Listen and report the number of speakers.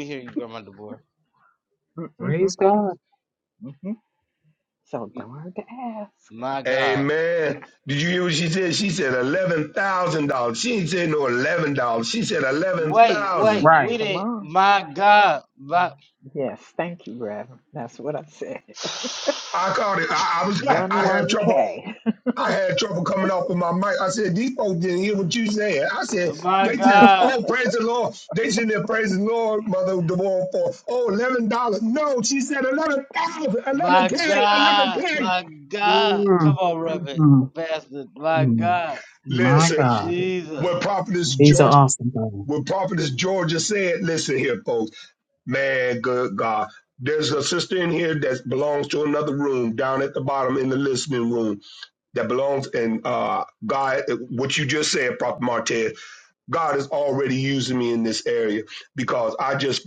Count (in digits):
4